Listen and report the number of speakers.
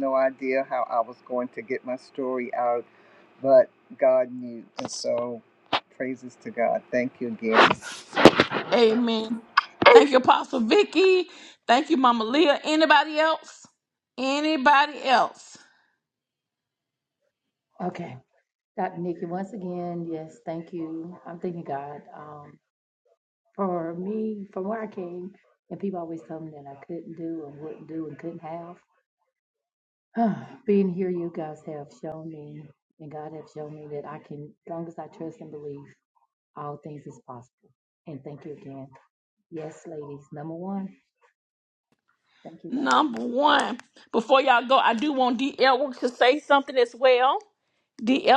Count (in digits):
3